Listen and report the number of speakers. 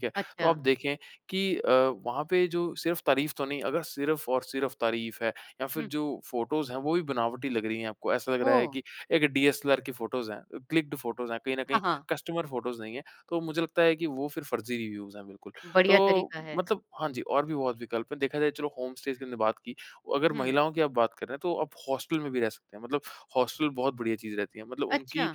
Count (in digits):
2